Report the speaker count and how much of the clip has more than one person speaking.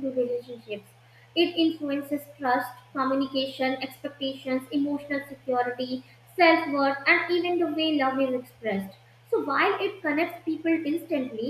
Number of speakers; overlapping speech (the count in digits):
1, no overlap